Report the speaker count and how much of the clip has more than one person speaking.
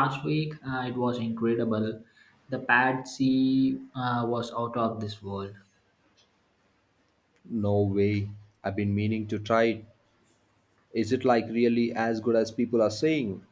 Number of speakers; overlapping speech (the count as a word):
two, no overlap